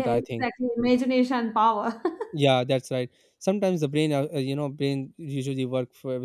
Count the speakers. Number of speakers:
2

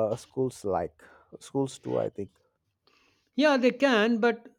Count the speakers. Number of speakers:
2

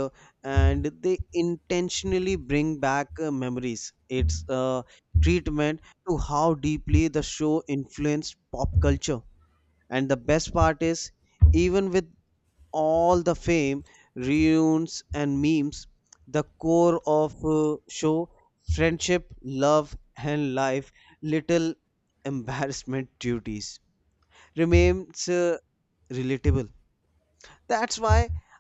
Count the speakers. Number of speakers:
1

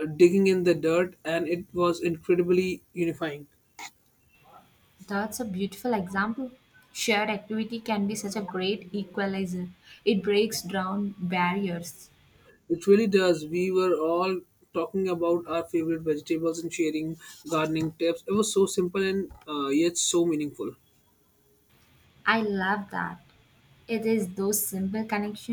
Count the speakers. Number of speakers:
2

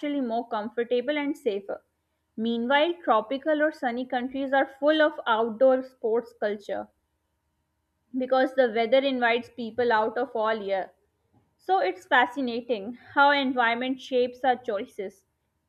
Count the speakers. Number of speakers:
1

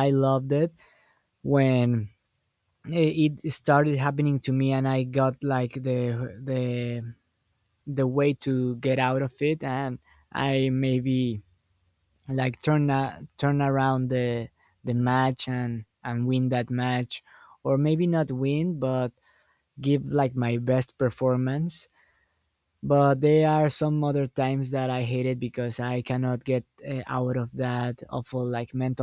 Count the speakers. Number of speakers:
1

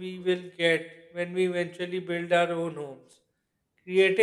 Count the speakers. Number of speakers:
1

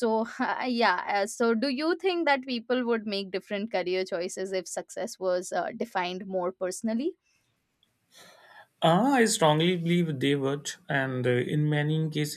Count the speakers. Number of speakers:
2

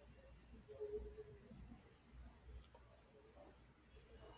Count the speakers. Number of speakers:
0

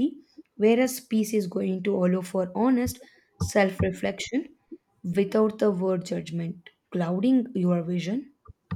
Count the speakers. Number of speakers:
1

